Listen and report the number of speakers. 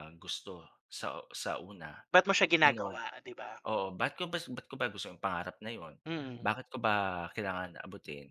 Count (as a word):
two